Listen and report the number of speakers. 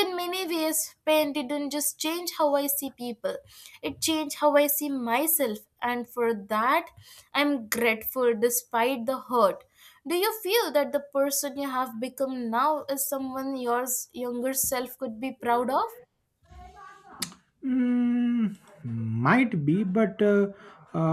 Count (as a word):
two